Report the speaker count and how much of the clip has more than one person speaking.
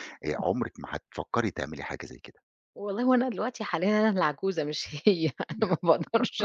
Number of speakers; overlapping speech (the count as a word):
two, no overlap